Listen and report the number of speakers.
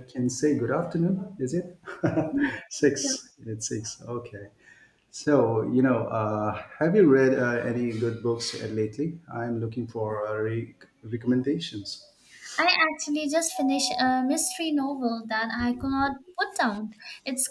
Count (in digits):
2